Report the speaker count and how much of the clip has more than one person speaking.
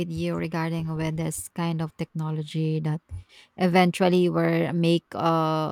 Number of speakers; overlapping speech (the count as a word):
one, no overlap